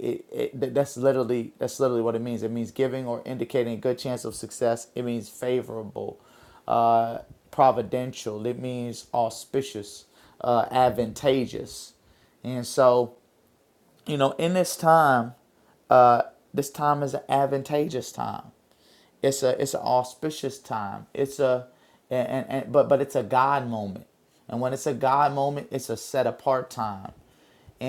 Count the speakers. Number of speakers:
1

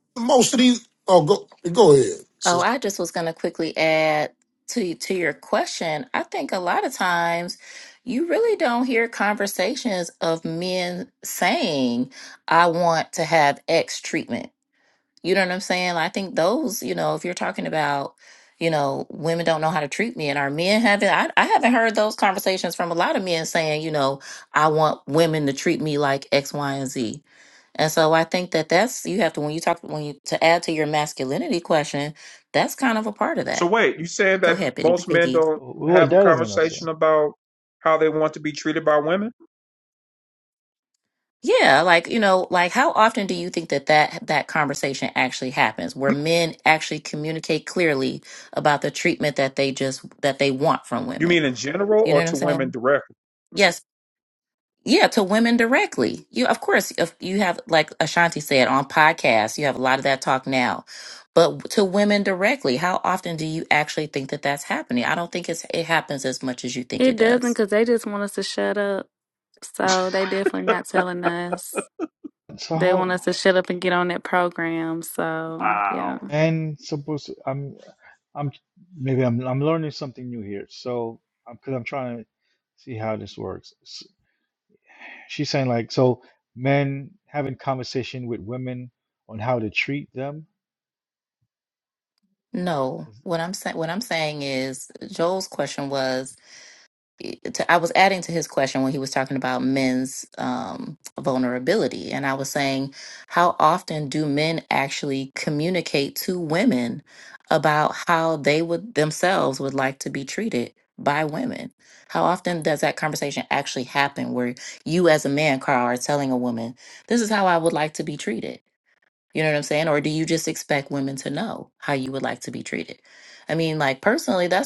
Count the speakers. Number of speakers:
5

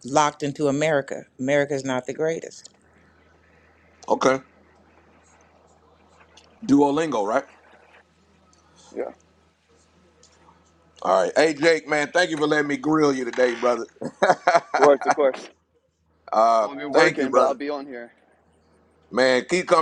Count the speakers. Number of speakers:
3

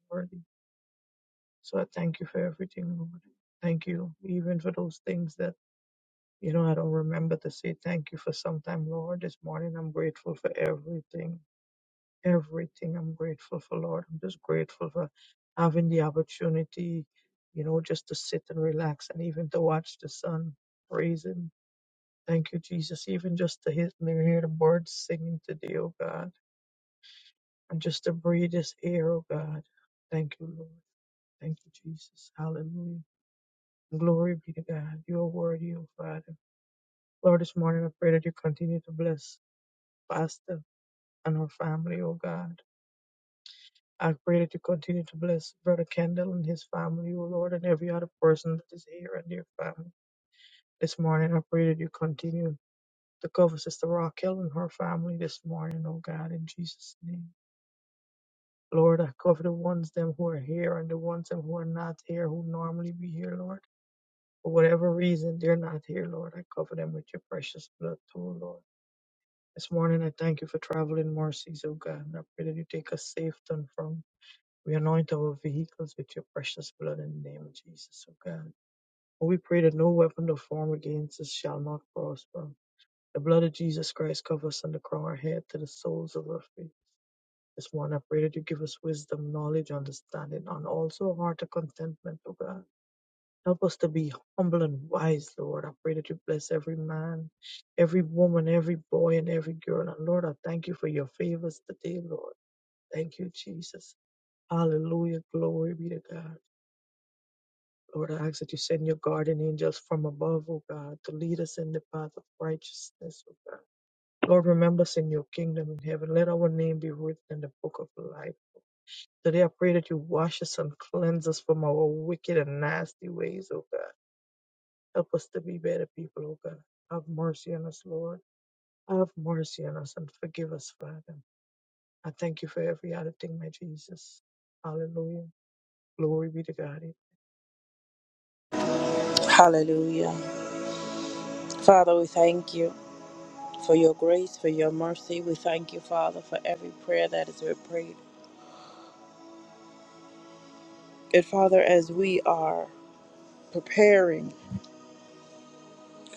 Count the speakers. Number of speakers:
2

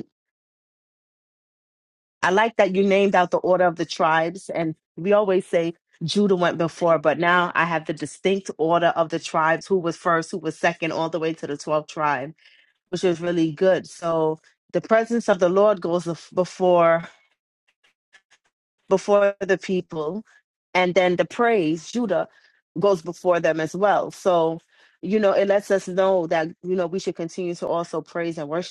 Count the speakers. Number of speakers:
1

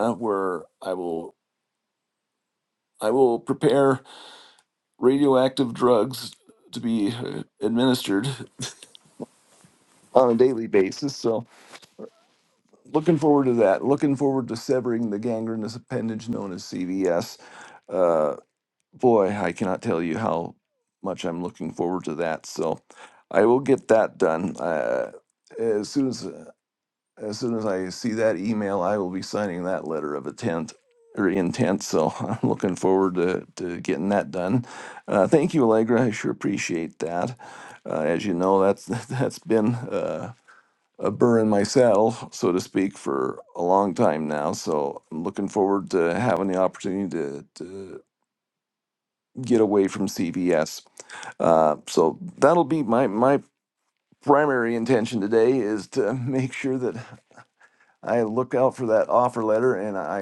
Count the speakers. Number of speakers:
1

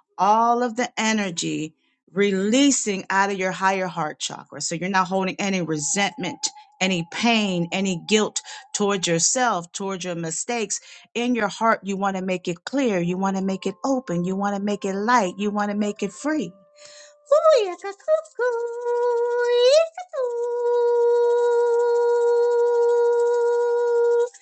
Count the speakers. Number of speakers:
1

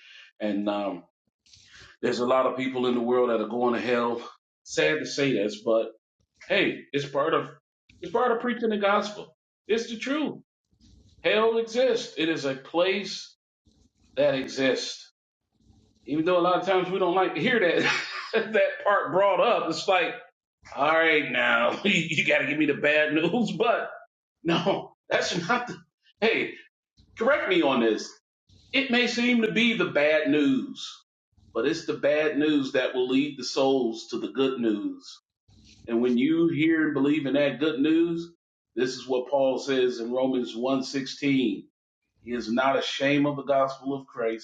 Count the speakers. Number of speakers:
1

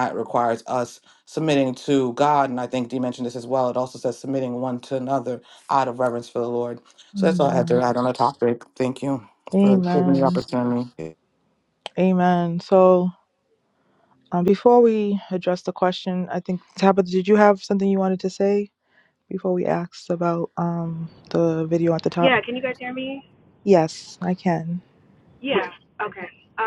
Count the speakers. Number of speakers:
3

